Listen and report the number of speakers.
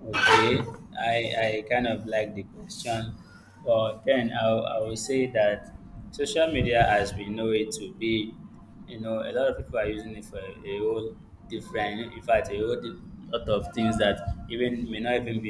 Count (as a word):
one